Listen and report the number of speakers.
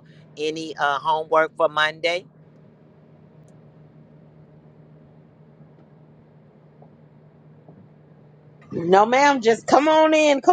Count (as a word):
two